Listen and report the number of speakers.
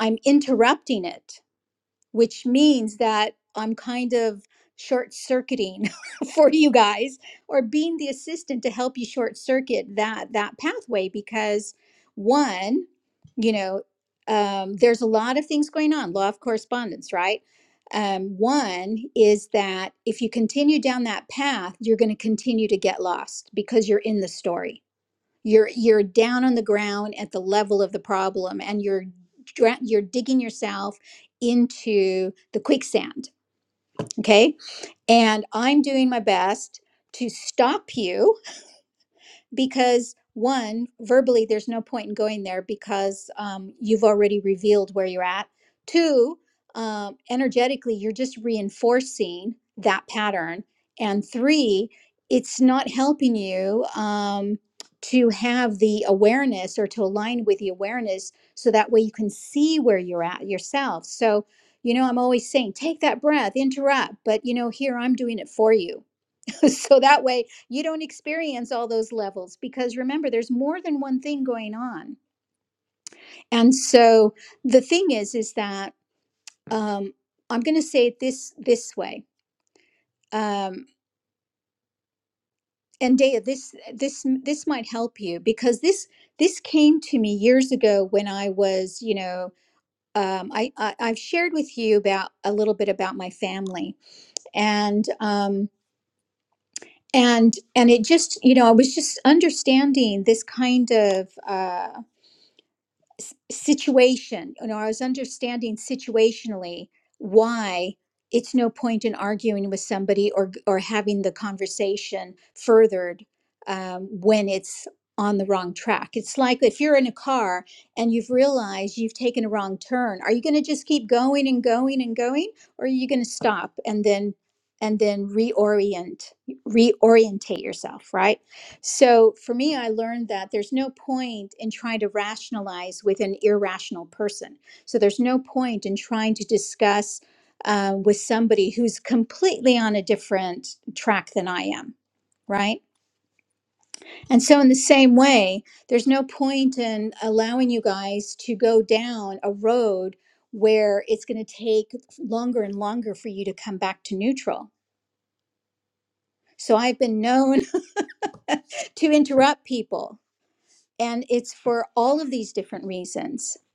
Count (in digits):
1